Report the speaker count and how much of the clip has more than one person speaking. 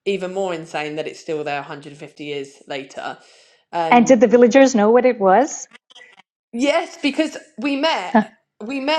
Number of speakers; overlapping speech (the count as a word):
two, about 3%